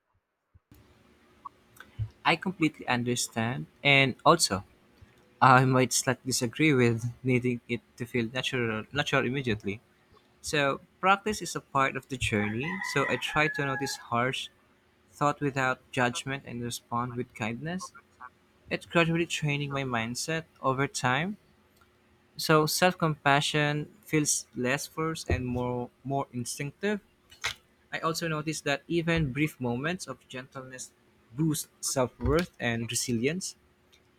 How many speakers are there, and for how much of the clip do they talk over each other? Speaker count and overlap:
1, no overlap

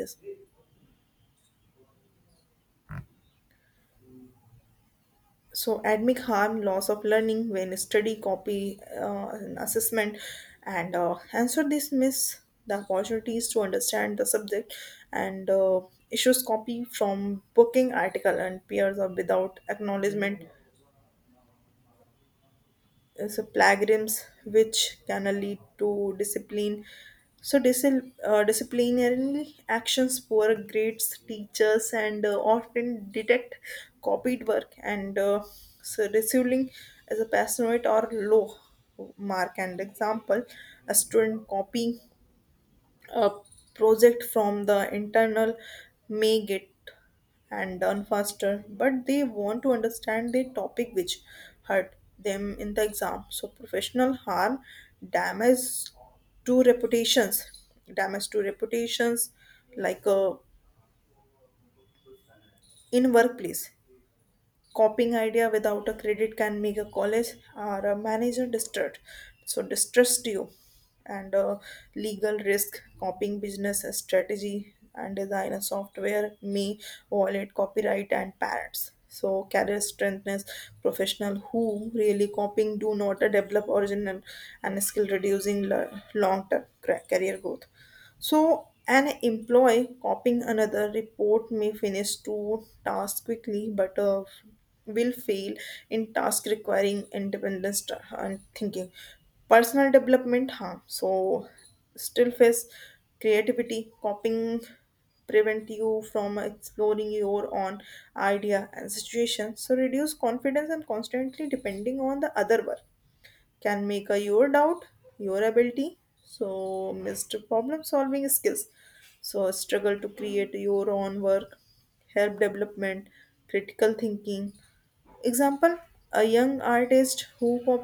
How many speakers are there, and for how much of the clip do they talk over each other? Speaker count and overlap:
1, no overlap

